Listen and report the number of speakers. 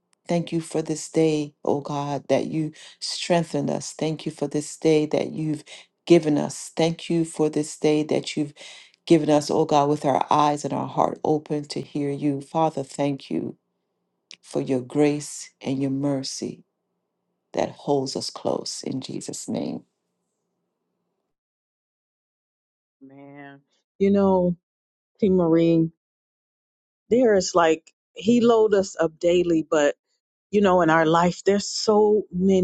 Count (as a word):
two